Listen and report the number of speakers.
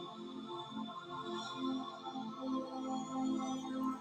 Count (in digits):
0